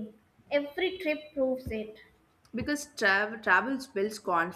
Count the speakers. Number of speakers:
two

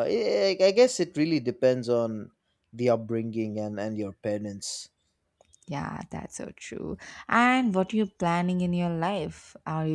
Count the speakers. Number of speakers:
two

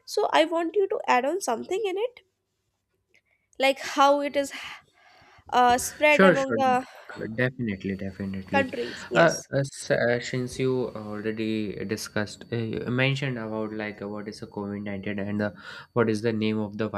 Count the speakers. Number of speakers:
two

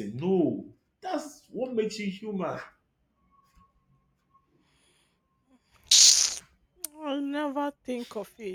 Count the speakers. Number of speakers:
two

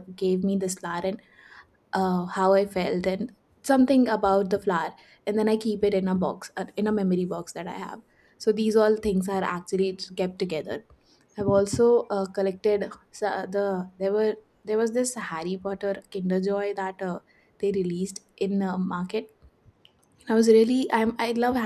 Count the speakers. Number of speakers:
one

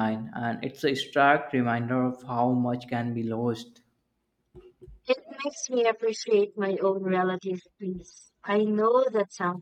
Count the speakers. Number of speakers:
two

